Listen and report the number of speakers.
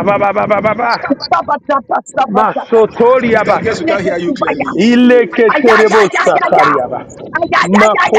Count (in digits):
3